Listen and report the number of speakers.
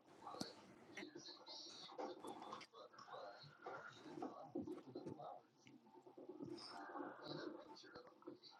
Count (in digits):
0